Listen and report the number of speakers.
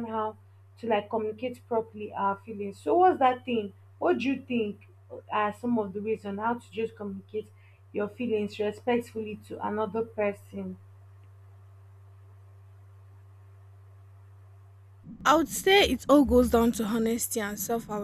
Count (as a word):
two